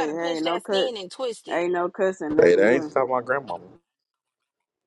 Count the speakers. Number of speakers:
3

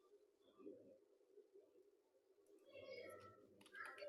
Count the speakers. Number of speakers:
0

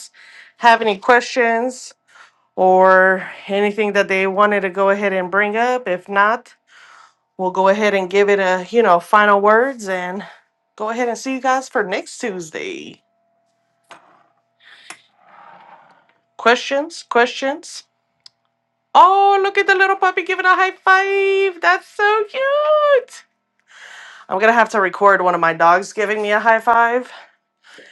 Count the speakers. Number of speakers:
1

